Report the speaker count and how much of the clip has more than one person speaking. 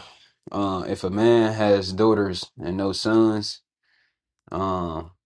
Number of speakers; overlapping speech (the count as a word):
one, no overlap